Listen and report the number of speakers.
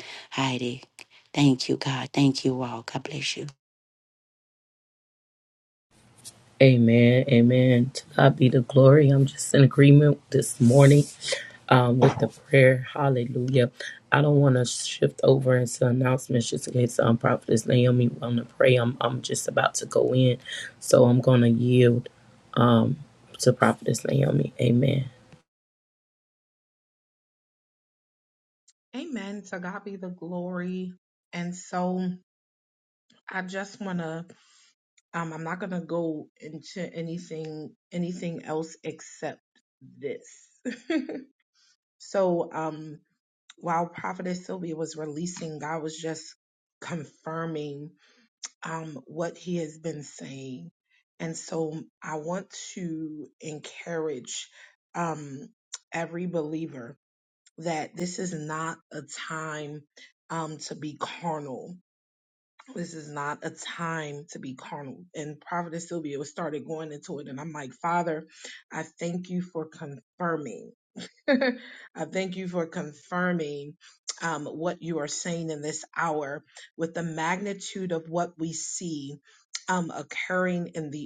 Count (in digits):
3